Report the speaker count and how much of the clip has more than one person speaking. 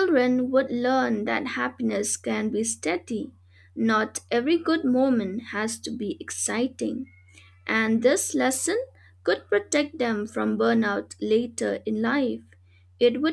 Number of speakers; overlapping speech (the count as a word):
one, no overlap